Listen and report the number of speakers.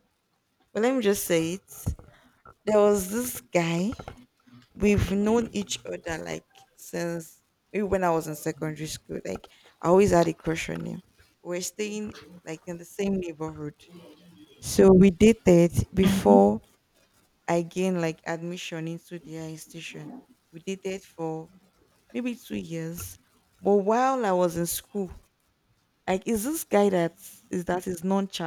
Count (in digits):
1